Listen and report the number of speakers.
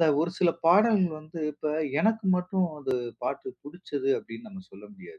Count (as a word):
one